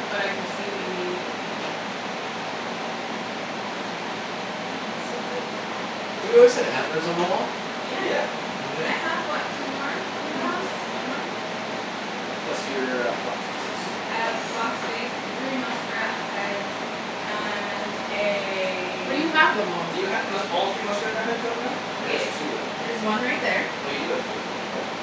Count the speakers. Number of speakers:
four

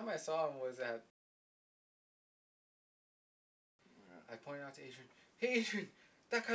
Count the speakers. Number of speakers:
one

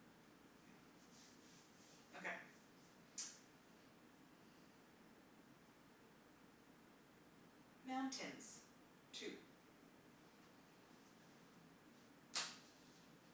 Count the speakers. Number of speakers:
one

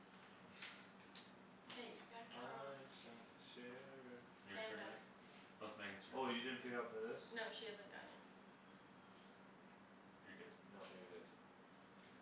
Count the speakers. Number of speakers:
three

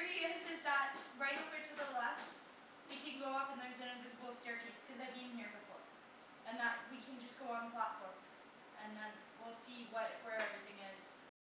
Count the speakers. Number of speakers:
one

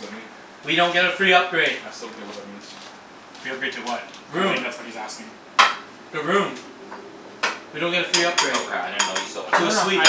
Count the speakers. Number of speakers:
four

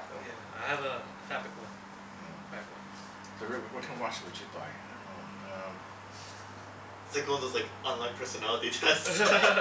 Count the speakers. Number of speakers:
three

